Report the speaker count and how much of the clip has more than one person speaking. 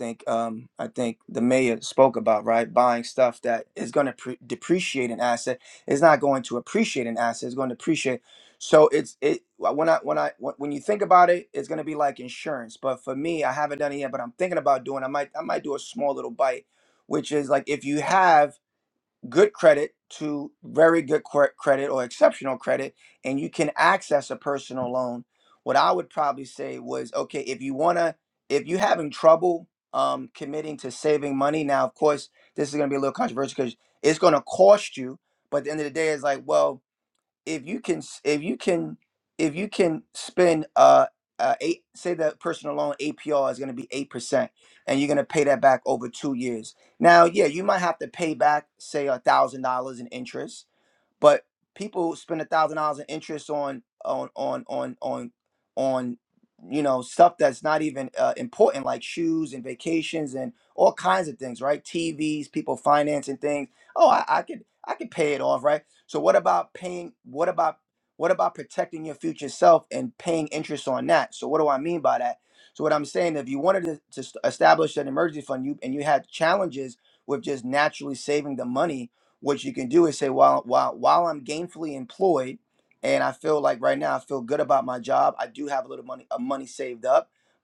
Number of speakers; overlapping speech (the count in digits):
1, no overlap